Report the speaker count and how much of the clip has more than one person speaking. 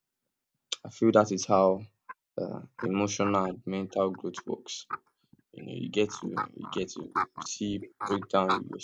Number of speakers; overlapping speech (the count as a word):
one, no overlap